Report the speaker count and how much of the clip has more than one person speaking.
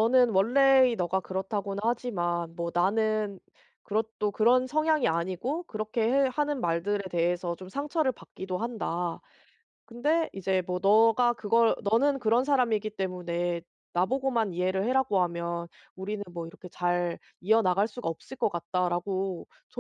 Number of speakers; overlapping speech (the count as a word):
one, no overlap